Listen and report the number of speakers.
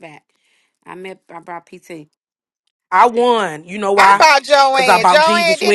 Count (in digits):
3